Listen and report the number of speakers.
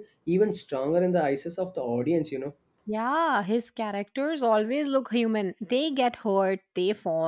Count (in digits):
2